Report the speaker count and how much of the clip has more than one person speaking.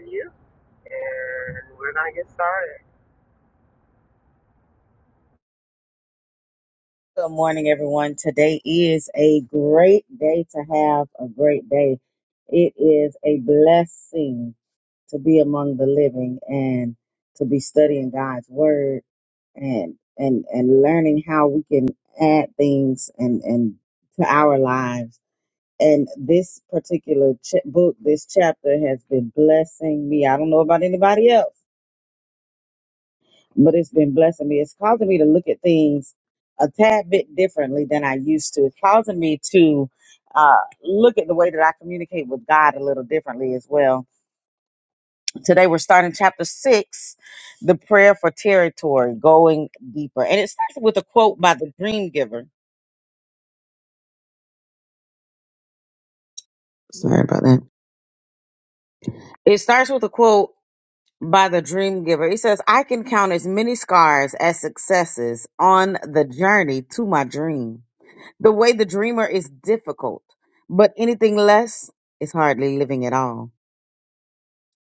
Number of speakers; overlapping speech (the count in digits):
2, no overlap